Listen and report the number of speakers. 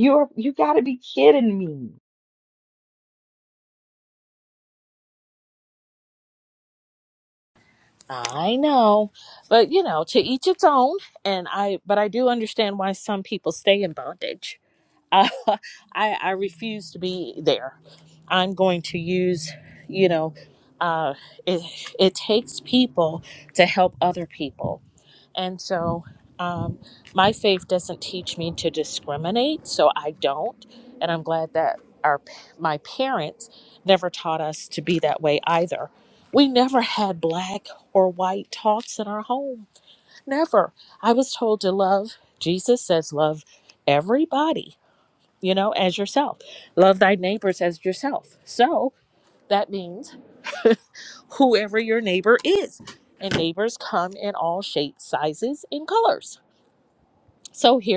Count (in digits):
2